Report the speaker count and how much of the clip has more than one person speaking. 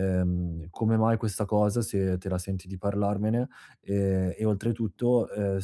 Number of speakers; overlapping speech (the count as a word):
one, no overlap